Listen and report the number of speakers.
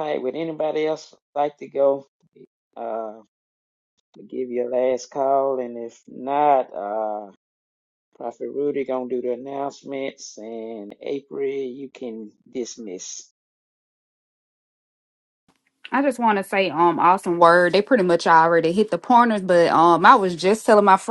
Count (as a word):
two